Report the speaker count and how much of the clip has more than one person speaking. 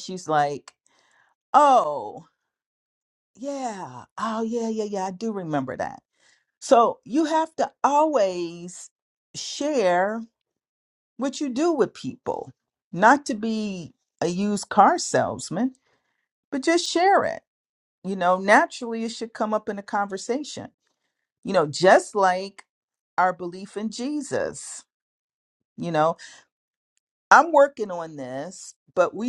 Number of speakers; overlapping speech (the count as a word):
one, no overlap